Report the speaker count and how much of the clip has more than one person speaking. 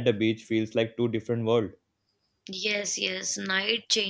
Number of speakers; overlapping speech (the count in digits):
2, no overlap